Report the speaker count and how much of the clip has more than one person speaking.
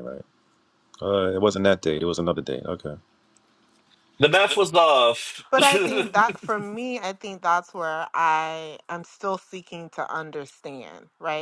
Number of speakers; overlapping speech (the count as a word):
three, no overlap